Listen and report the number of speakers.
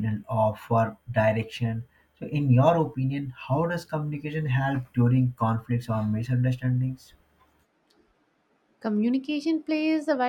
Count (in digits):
2